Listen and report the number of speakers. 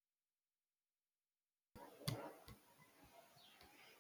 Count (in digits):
0